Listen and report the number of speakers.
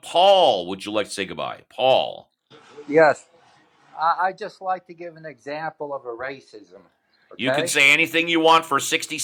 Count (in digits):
2